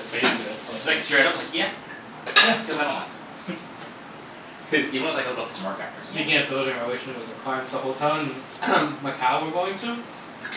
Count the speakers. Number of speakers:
three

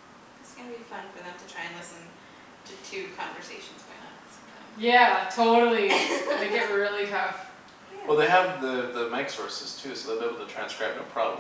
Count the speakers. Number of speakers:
three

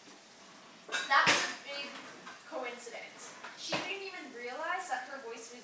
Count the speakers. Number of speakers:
one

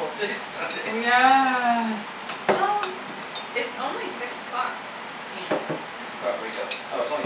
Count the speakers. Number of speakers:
three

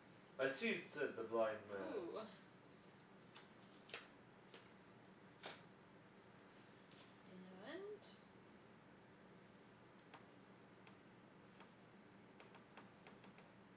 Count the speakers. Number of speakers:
two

